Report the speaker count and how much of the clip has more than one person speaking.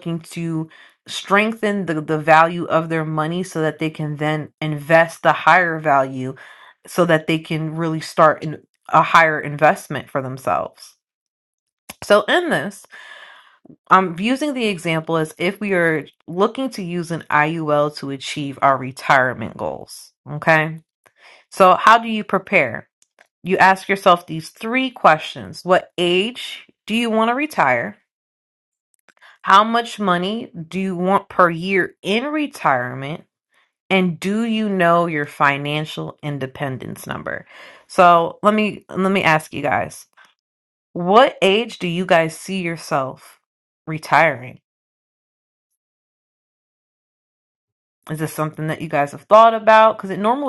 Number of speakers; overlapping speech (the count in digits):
1, no overlap